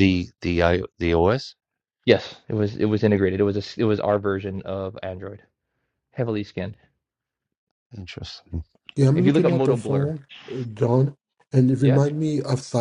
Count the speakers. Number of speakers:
3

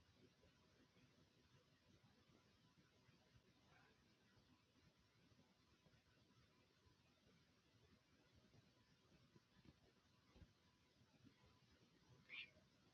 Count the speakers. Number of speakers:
0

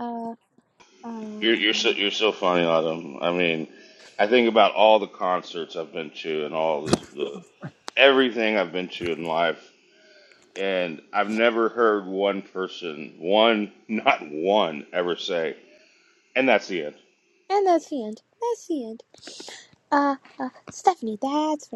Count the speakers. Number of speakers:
2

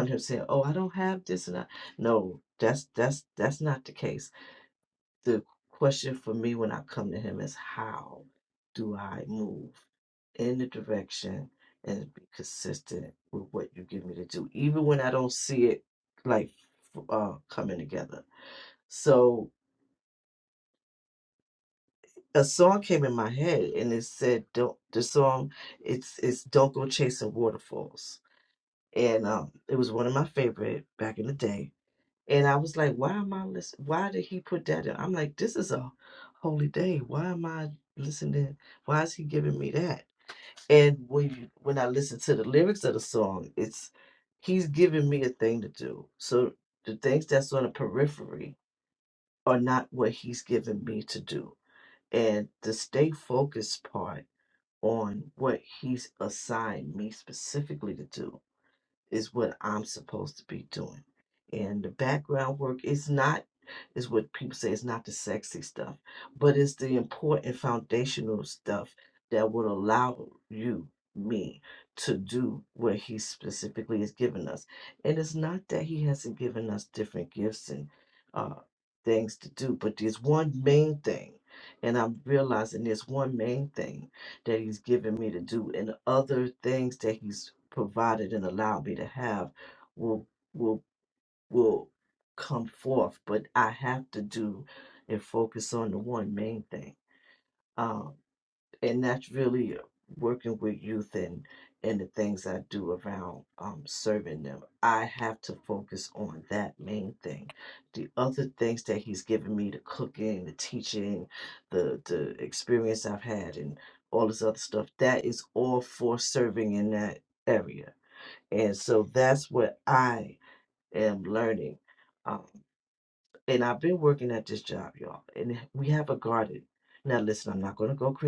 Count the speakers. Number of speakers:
1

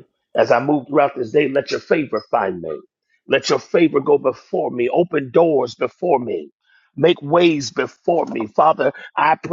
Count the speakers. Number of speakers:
1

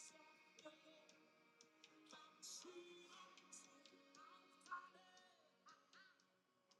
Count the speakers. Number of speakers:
0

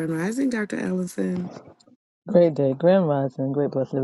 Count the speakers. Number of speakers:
2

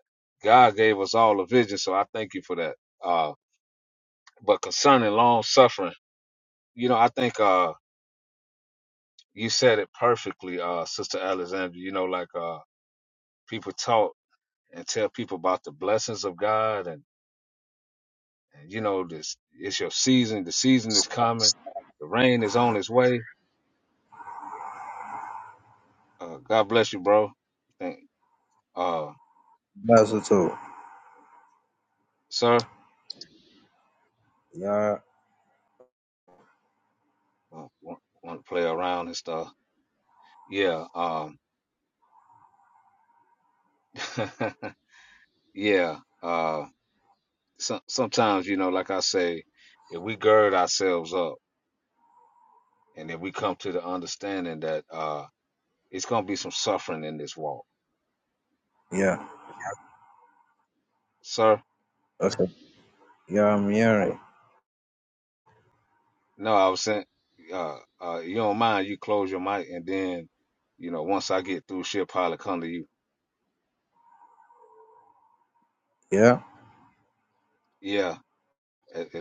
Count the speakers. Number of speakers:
2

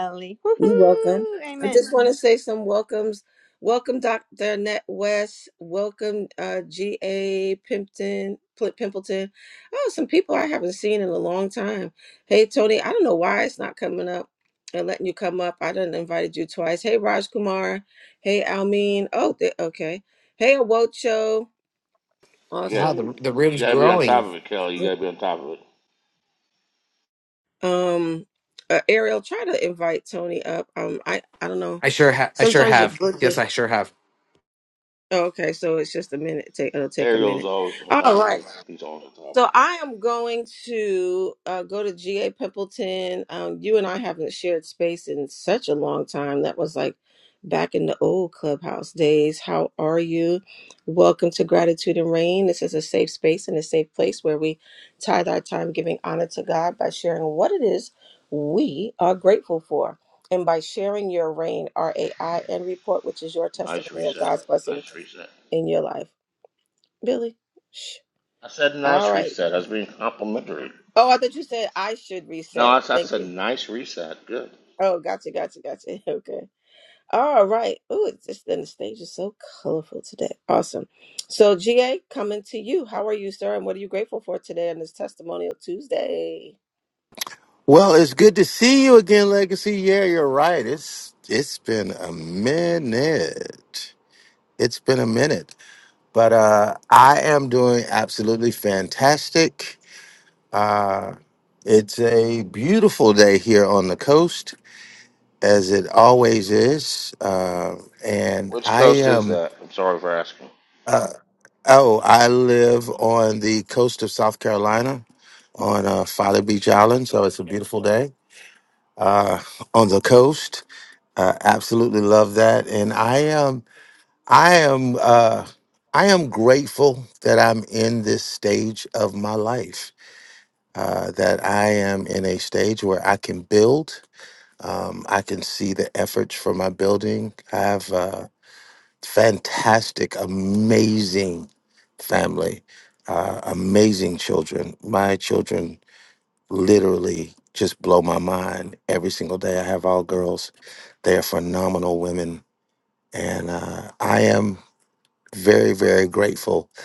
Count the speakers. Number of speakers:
5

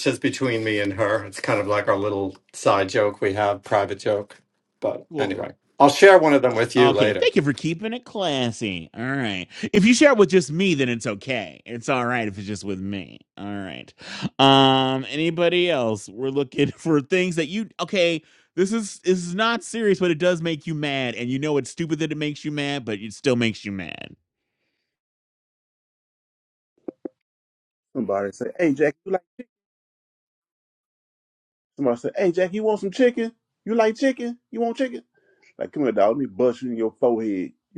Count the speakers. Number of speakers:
3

